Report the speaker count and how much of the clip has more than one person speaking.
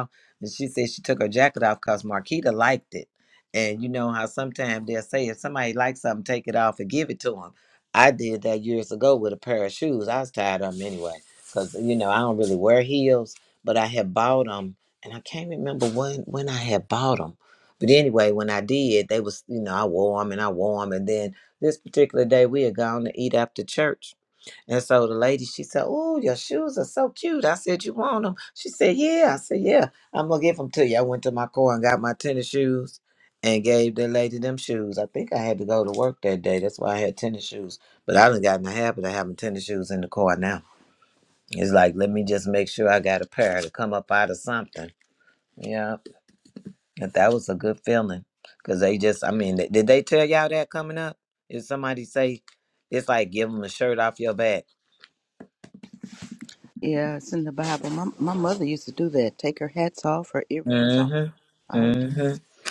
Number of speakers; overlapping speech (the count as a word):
two, about 1%